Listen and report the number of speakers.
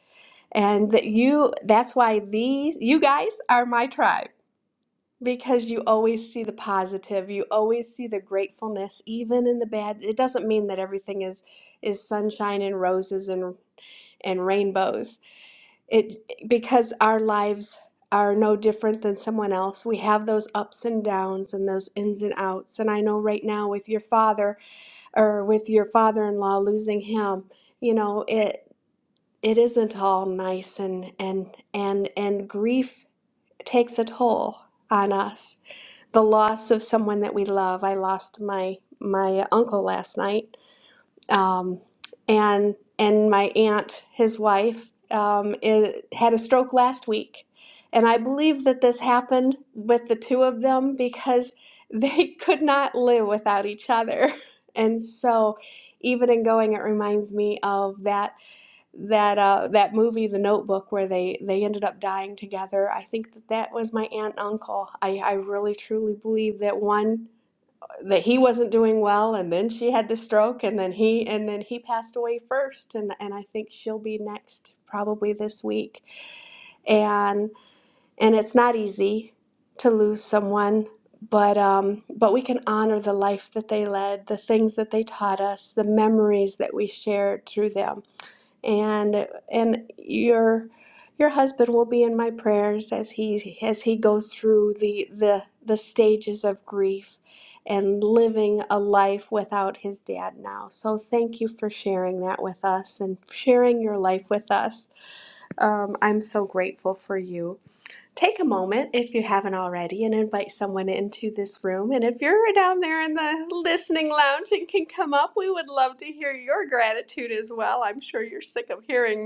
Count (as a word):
one